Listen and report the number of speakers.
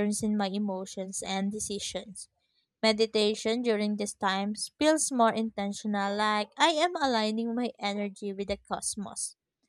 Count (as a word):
one